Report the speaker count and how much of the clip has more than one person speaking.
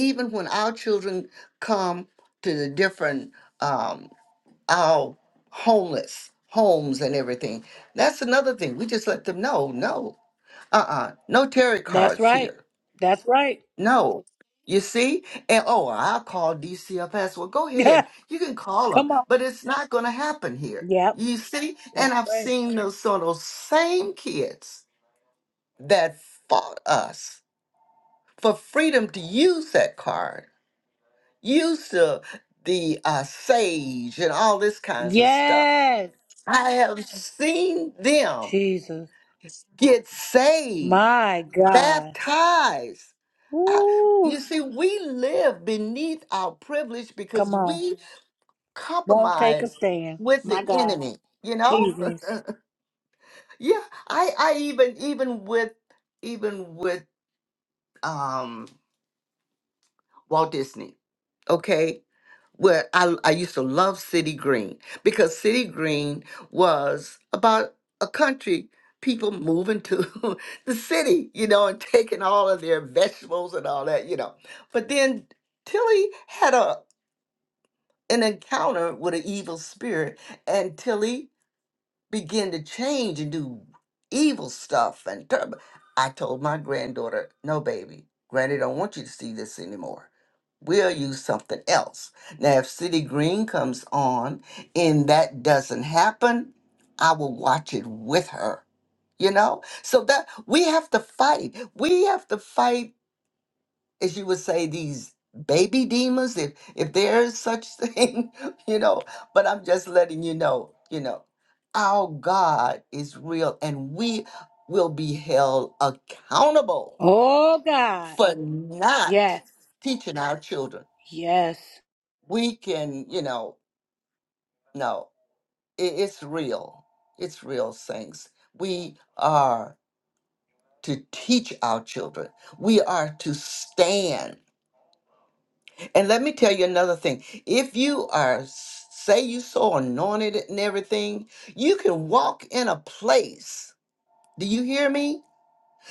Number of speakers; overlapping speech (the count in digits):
2, about 4%